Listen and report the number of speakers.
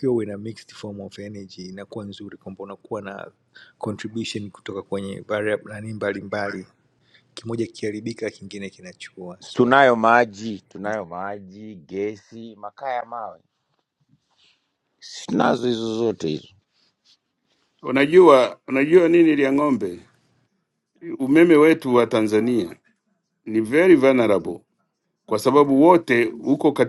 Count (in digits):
3